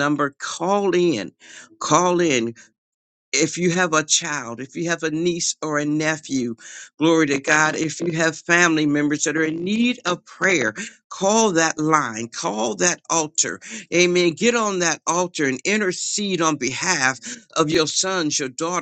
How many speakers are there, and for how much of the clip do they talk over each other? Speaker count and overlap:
1, no overlap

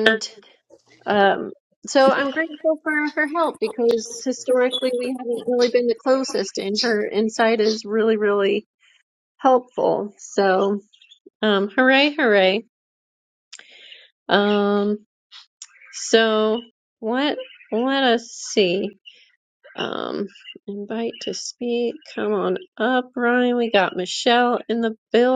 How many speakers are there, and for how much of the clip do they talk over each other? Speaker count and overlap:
1, no overlap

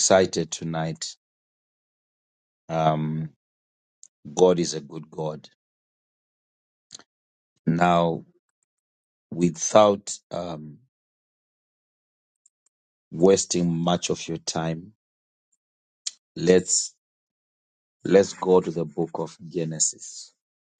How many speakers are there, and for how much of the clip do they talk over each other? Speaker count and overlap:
1, no overlap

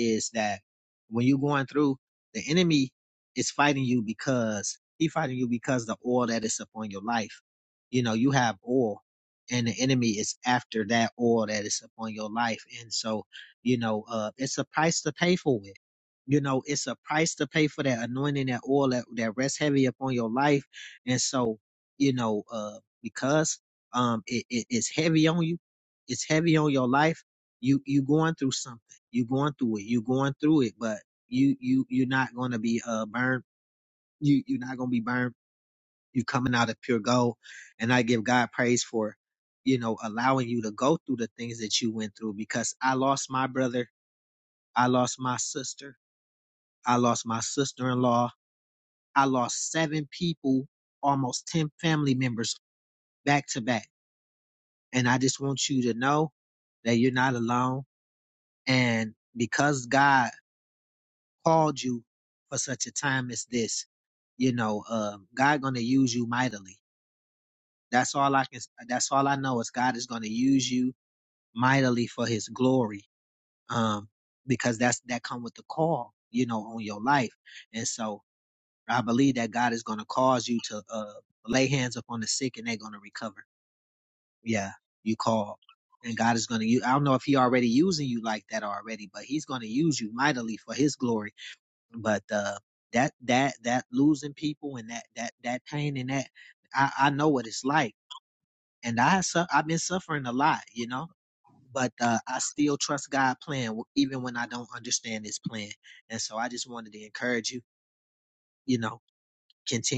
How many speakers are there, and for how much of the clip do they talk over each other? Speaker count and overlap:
1, no overlap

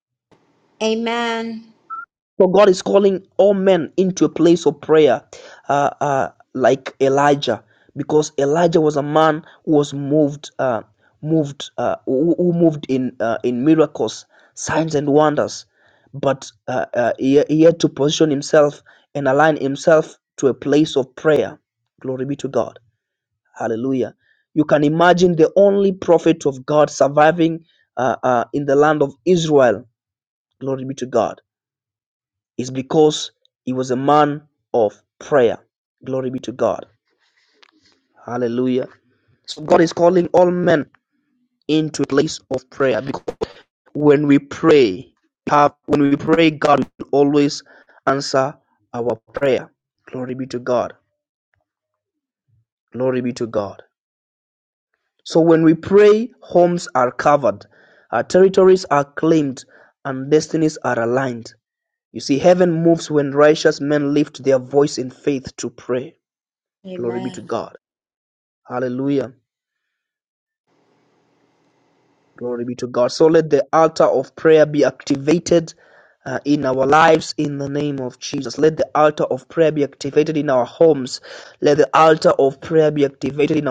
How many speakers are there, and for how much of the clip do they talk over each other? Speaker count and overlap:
2, about 1%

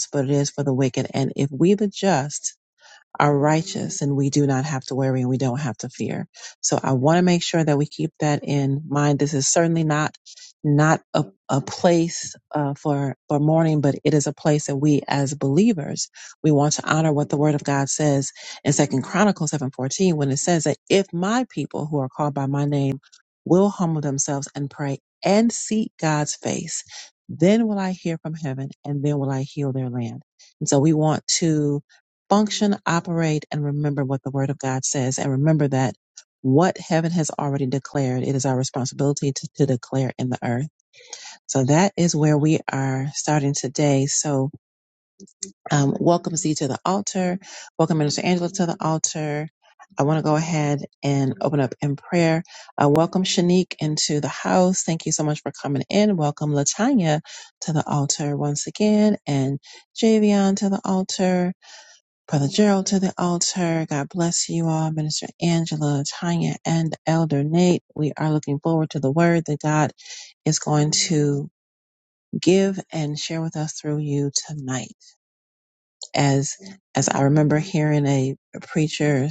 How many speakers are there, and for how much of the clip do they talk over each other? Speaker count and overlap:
1, no overlap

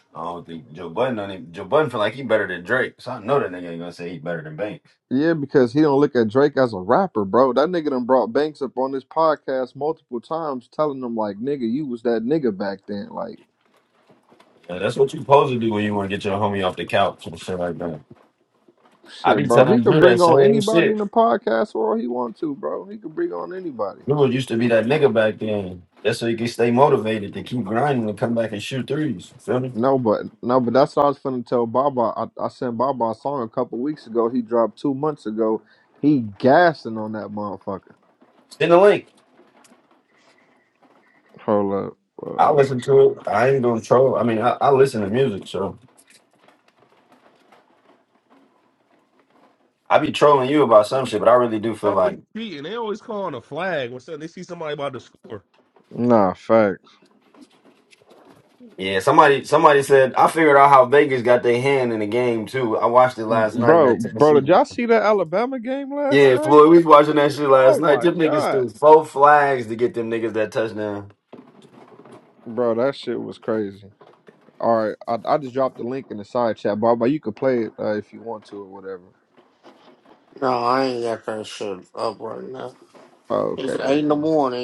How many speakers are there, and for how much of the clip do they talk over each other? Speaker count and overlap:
4, about 6%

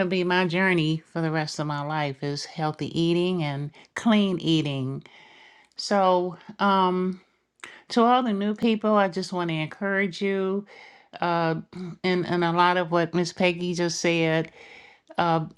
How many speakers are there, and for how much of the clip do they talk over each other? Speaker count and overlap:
1, no overlap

